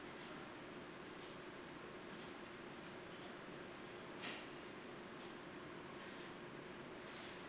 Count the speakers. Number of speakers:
0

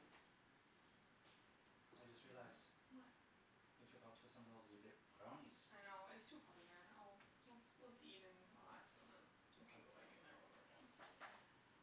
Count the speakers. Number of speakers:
2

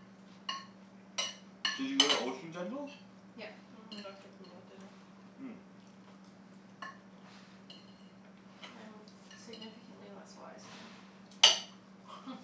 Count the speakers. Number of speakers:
3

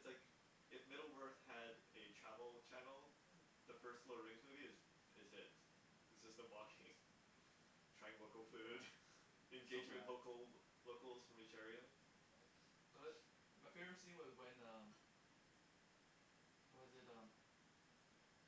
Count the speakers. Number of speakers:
2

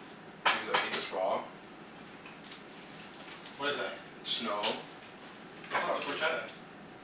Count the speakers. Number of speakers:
2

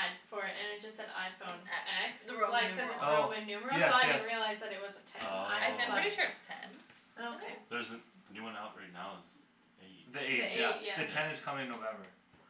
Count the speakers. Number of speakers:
4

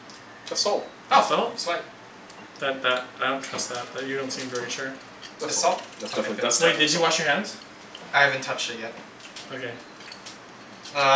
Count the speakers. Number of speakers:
3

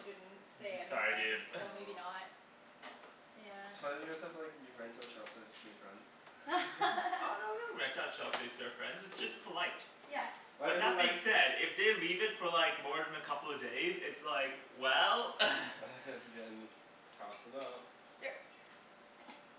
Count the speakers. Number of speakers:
3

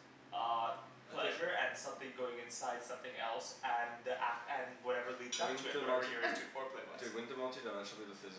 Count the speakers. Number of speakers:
2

